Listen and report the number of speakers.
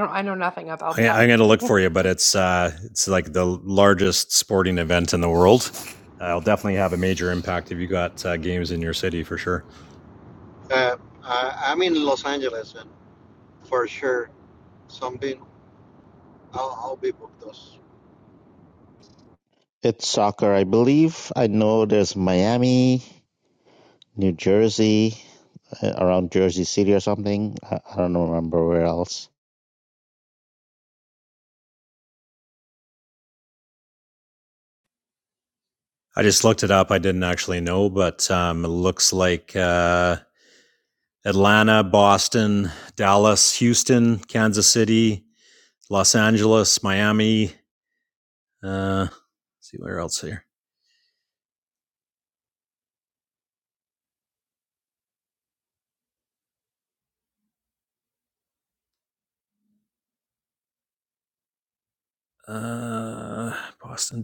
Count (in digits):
4